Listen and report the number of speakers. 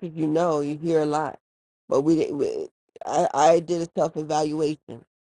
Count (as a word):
one